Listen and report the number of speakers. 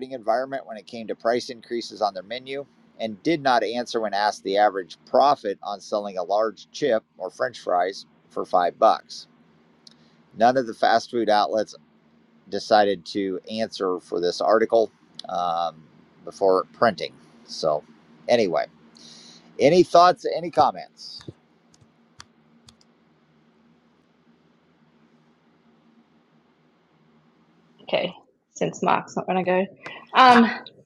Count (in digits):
2